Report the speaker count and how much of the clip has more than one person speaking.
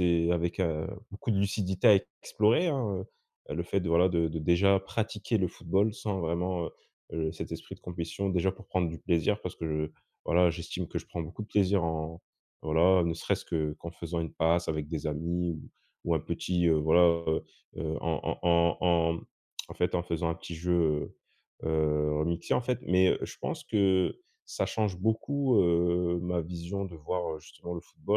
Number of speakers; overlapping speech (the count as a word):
one, no overlap